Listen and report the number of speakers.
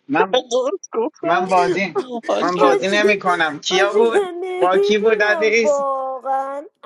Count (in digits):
3